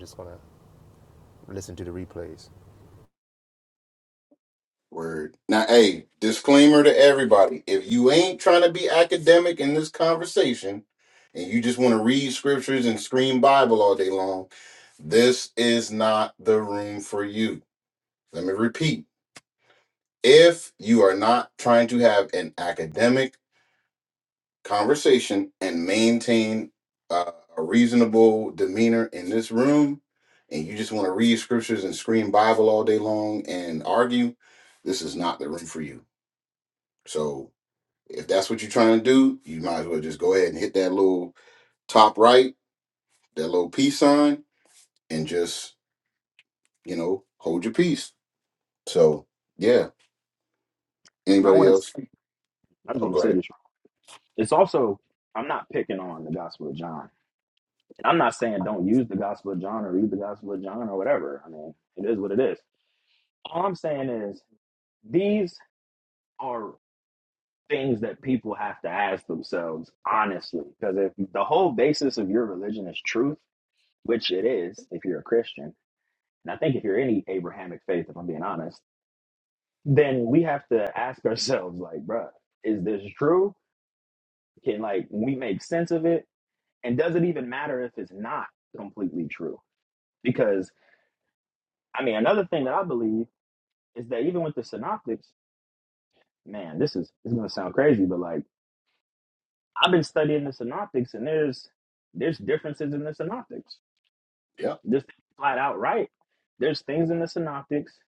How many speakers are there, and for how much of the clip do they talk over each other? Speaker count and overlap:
3, about 1%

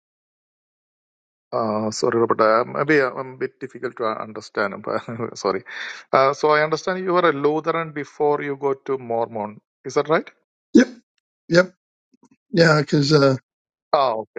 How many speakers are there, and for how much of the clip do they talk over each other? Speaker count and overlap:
2, no overlap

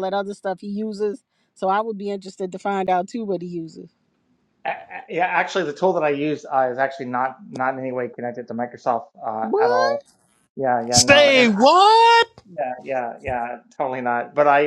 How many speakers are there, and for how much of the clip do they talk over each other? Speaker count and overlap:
3, about 9%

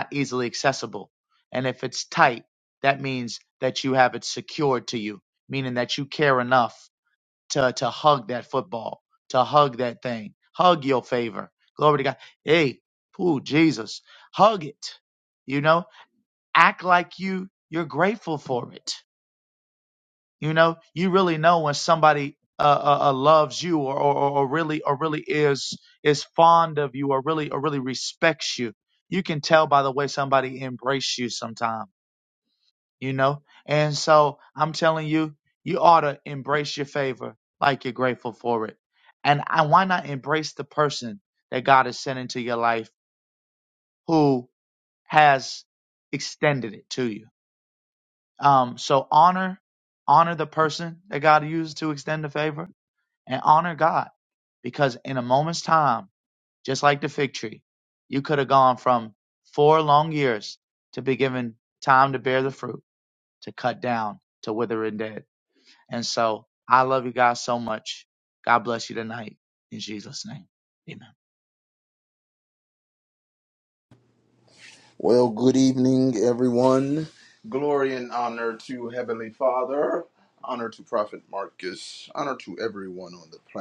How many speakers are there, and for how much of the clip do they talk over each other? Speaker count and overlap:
2, no overlap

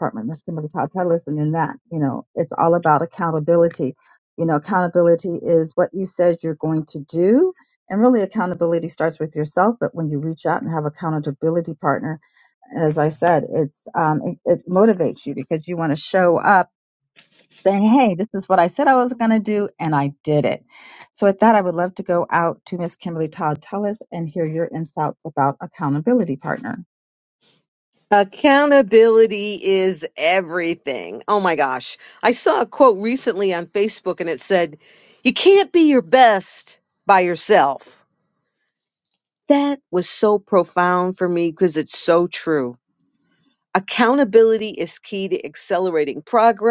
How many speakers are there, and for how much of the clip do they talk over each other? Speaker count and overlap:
2, no overlap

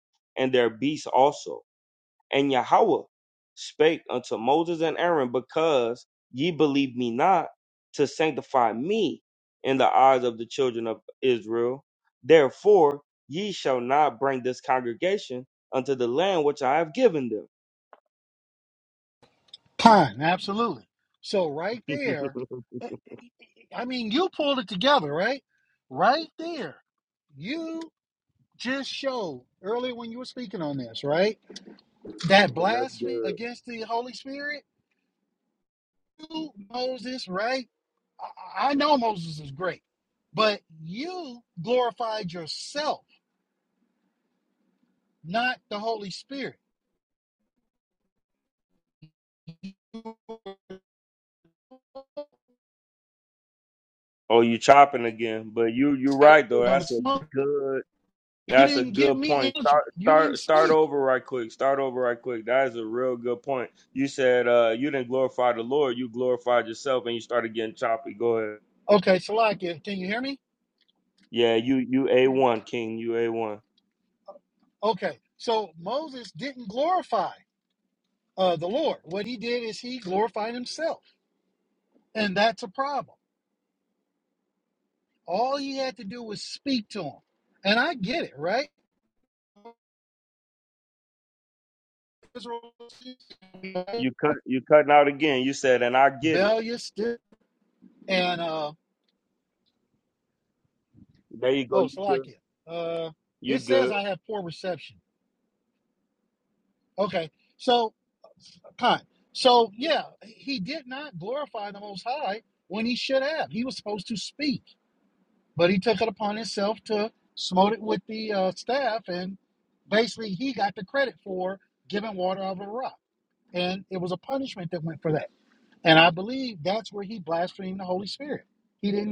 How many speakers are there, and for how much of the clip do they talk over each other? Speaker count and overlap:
2, about 3%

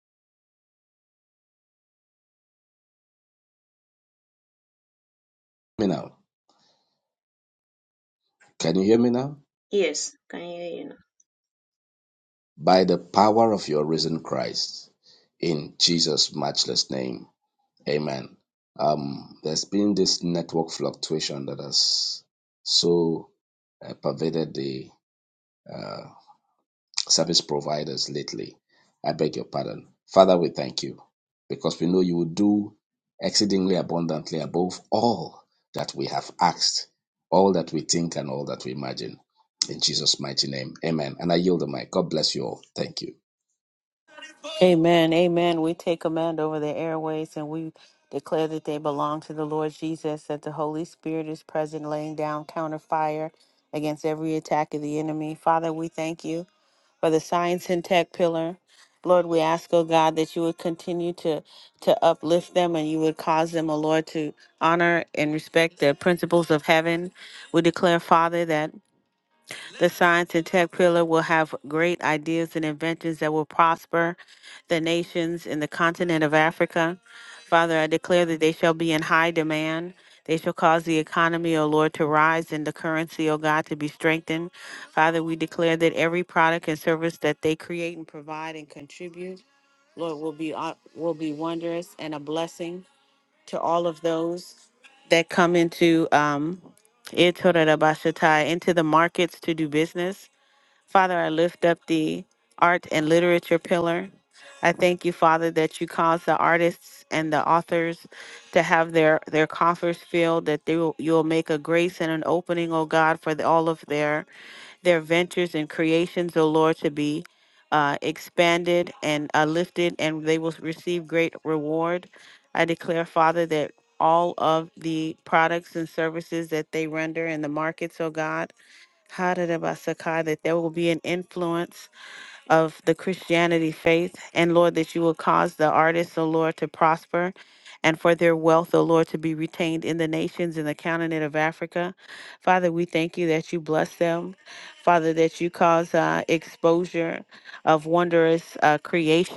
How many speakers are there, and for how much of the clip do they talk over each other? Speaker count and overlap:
3, no overlap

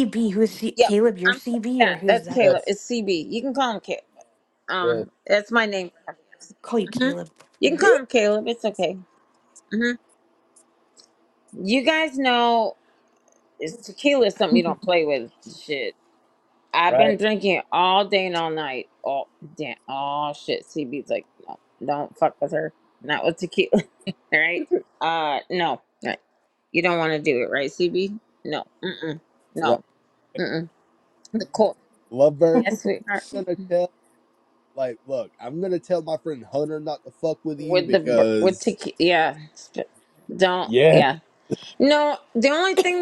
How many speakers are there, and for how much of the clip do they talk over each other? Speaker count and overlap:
3, about 8%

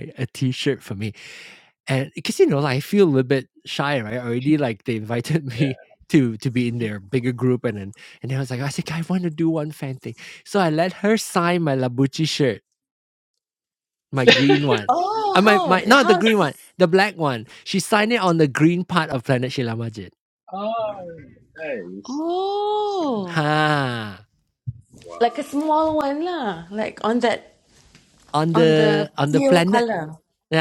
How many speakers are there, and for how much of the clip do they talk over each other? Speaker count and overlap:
3, about 9%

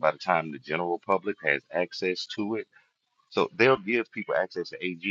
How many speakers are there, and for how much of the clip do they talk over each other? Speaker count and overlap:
1, no overlap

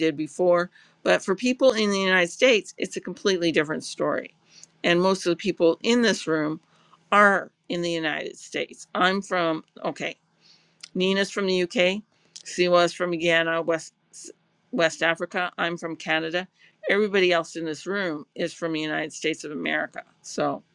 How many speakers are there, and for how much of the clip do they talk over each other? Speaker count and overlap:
1, no overlap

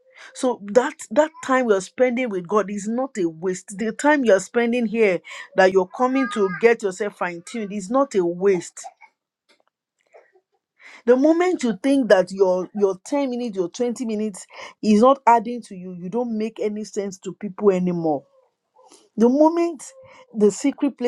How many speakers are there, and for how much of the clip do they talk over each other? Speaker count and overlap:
1, no overlap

